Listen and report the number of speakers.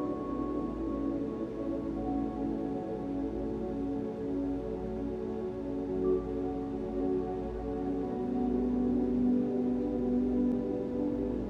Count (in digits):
0